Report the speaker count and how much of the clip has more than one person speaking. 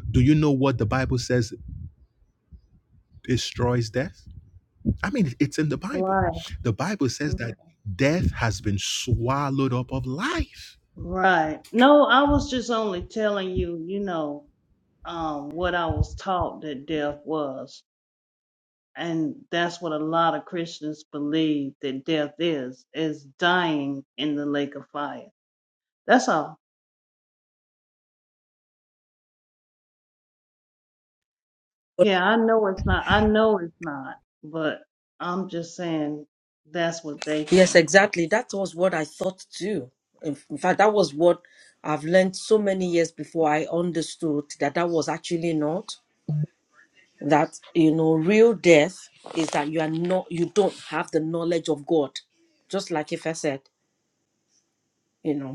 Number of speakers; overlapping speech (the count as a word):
three, about 1%